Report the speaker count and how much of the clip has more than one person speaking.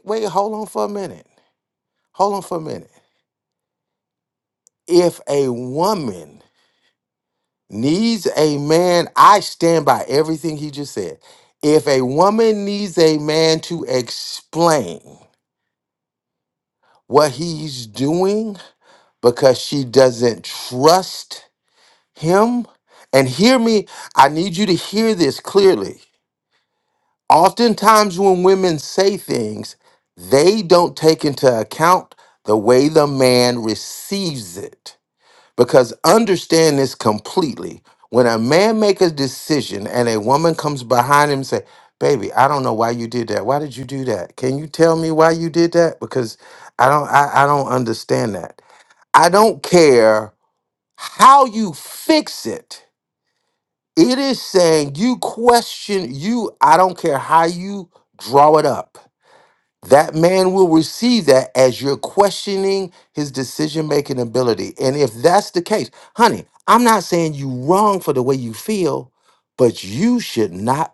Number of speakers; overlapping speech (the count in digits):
1, no overlap